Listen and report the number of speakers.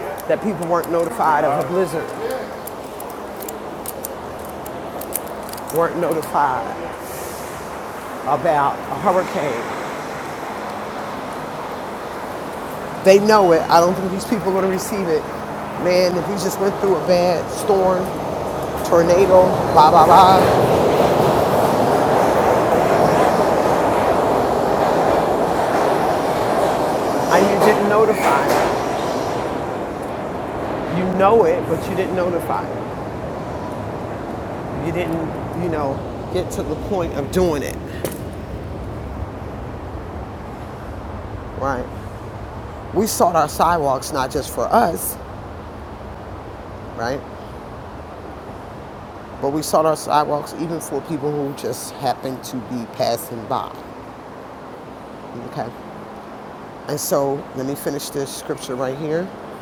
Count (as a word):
one